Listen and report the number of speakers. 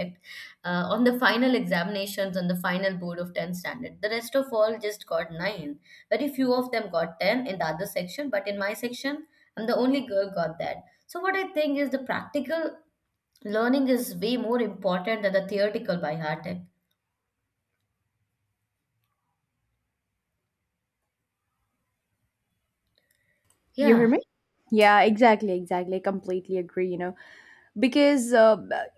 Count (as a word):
two